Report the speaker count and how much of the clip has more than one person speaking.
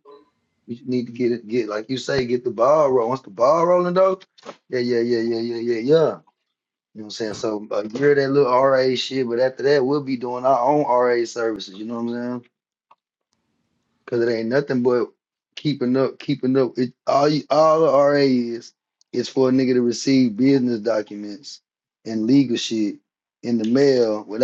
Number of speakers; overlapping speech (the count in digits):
1, no overlap